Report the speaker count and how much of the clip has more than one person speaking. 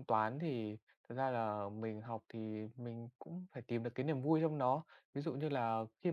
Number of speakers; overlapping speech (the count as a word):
one, no overlap